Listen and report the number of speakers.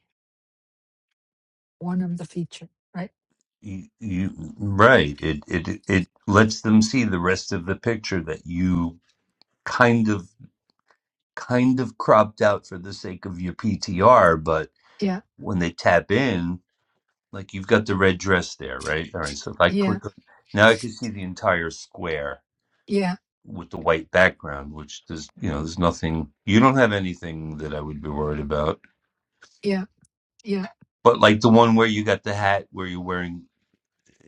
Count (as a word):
two